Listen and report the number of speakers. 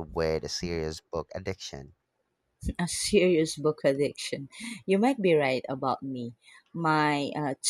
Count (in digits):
2